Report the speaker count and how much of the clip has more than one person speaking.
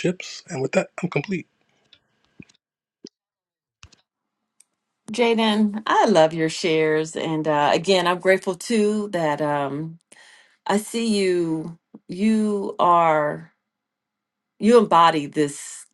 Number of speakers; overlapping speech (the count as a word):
two, no overlap